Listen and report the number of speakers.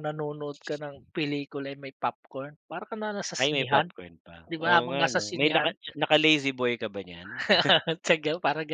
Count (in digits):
2